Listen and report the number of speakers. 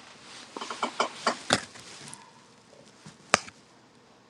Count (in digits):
0